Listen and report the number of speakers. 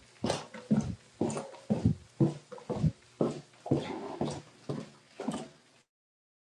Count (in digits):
0